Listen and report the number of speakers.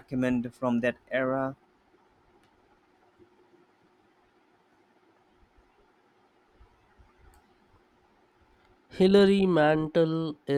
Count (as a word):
two